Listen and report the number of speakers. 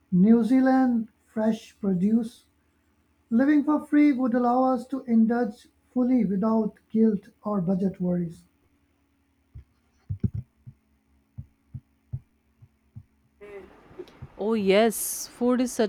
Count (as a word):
two